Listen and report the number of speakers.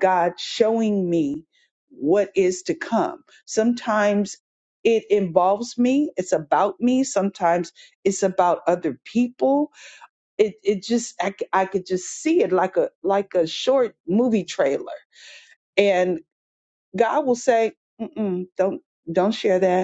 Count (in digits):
1